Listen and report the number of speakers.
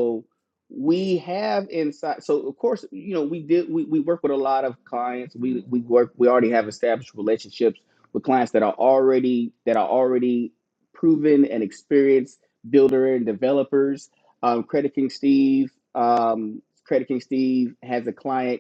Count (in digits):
1